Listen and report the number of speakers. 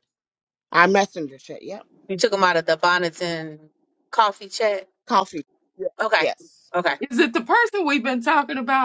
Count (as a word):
three